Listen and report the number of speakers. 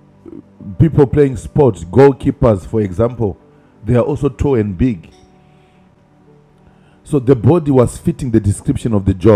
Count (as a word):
one